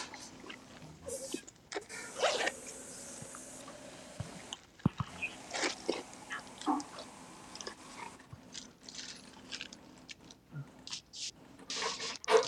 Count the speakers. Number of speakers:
zero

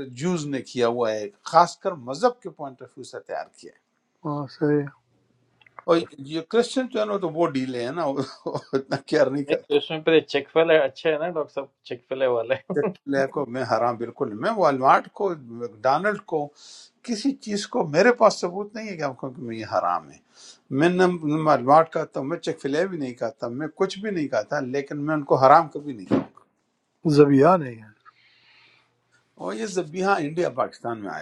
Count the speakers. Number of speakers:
three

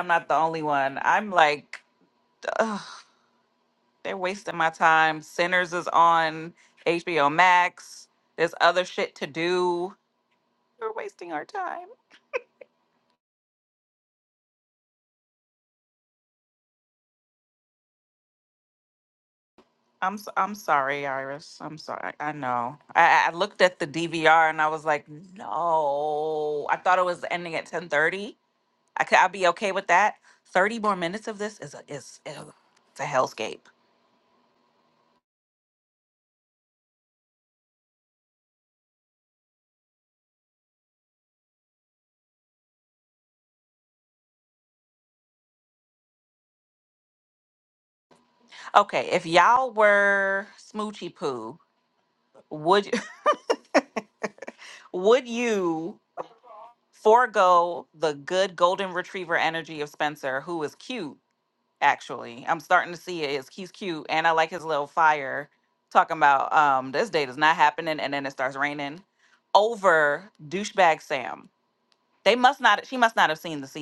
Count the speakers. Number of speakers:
one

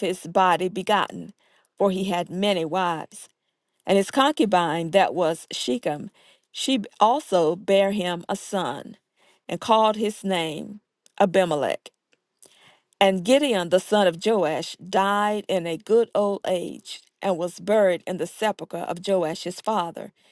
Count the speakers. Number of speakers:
one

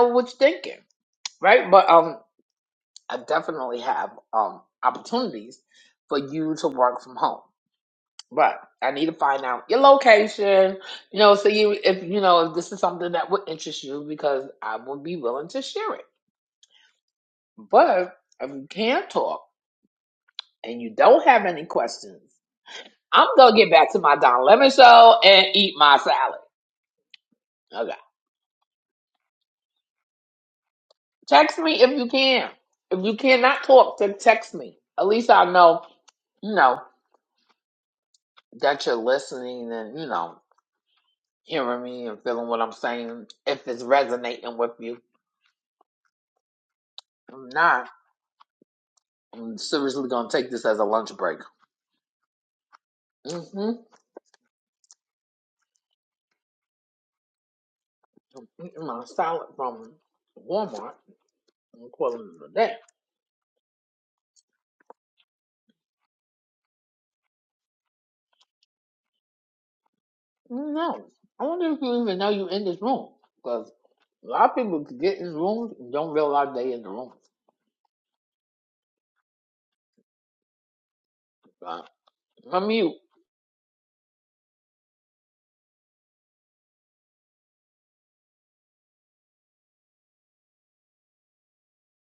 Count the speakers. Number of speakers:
one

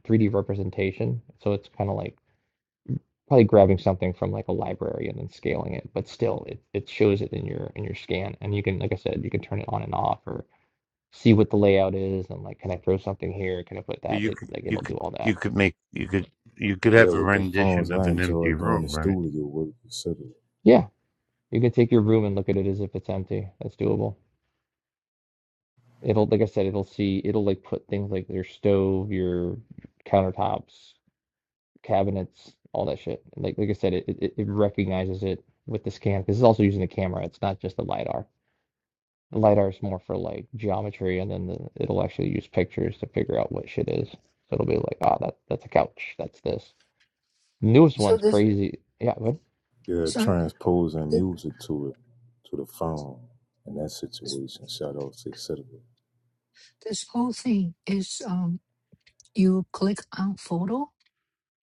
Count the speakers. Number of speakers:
four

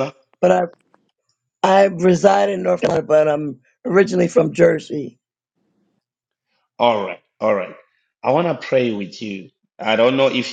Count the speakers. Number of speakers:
two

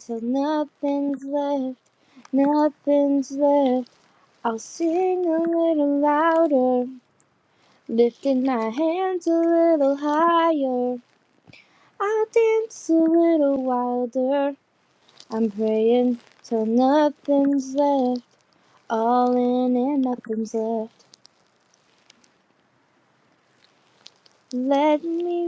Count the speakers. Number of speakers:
one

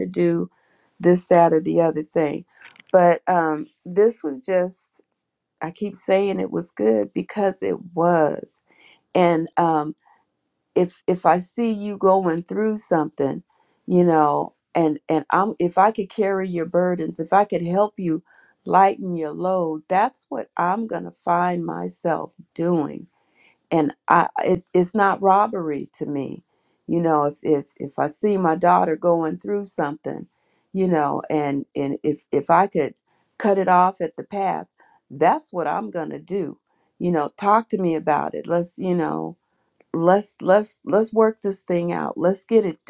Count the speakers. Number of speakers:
one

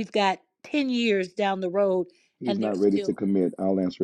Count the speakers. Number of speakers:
two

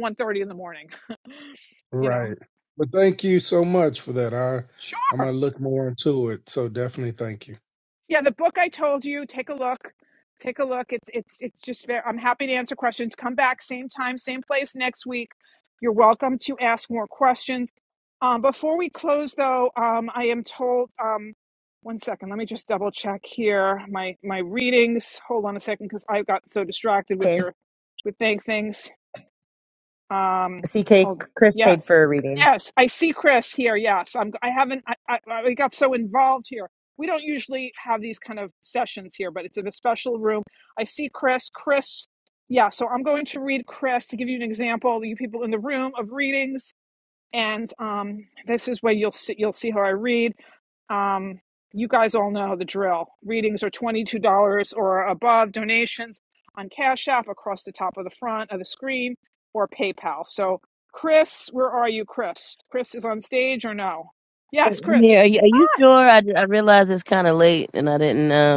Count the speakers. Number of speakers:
four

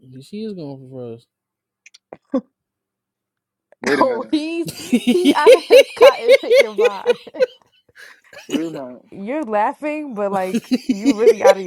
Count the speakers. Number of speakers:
three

